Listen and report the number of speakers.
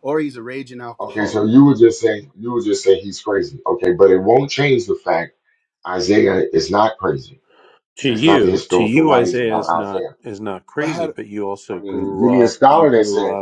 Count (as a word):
three